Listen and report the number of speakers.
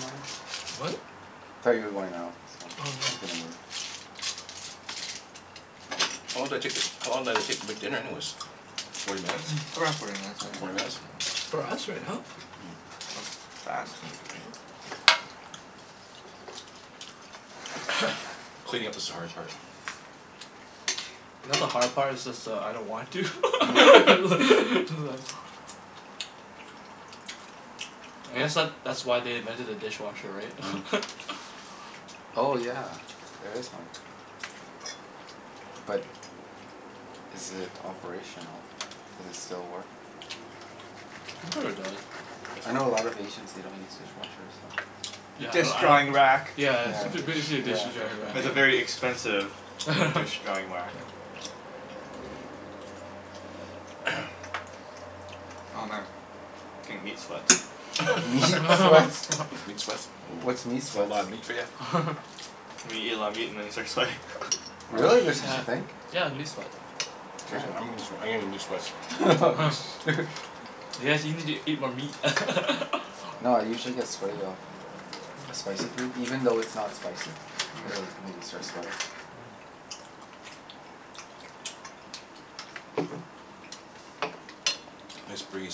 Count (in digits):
4